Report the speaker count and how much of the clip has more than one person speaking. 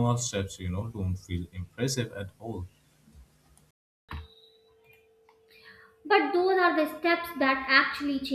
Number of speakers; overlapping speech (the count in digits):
2, no overlap